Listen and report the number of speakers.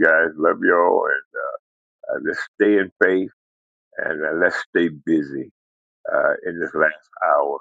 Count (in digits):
1